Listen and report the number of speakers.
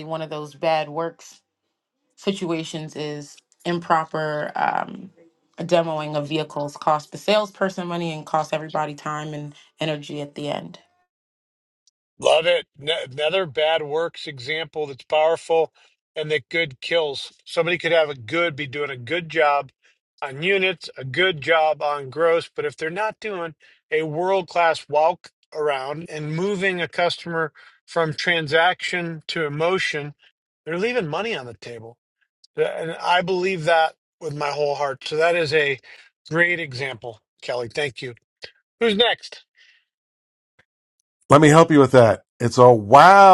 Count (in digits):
3